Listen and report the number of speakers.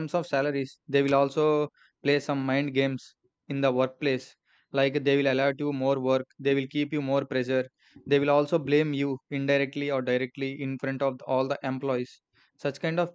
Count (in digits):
1